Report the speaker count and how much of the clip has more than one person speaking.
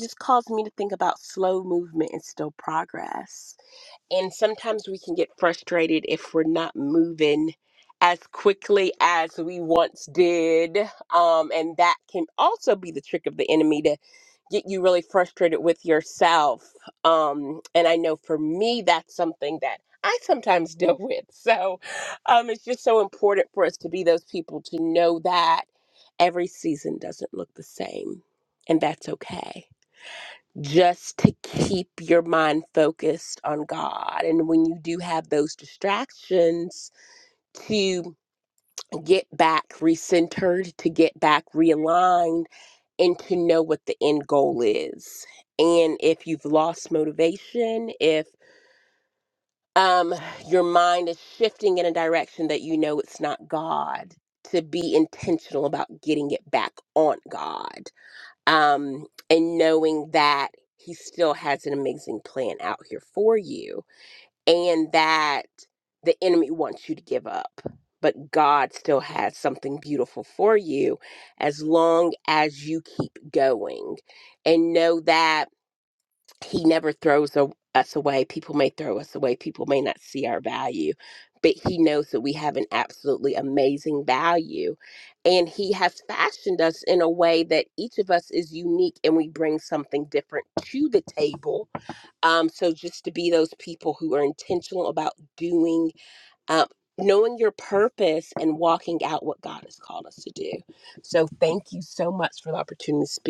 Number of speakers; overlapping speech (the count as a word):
one, no overlap